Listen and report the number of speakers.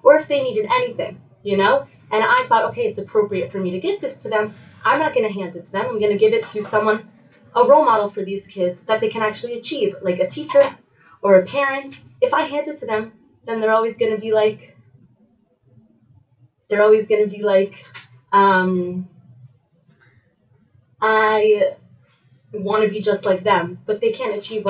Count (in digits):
1